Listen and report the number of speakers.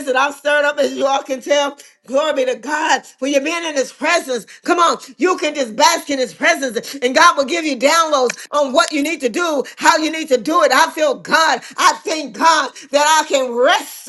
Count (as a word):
one